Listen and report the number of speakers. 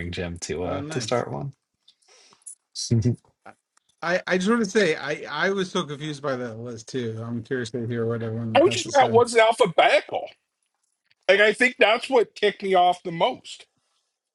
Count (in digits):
3